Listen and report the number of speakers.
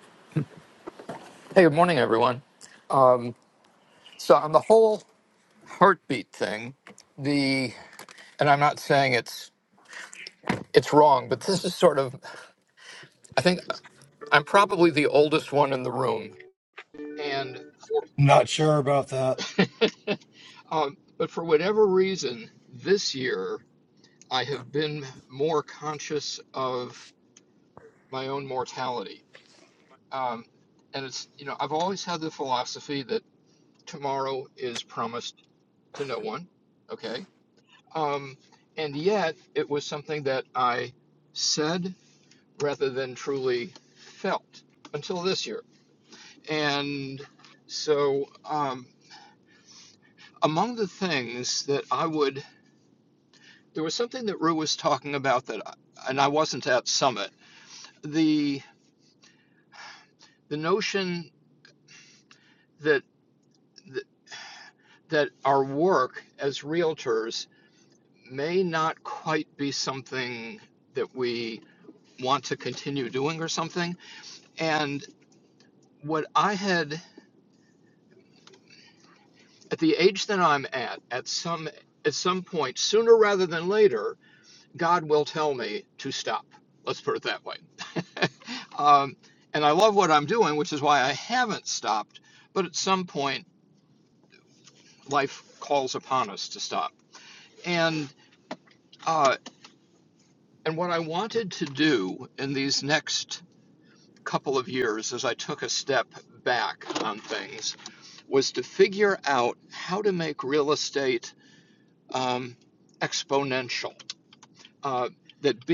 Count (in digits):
2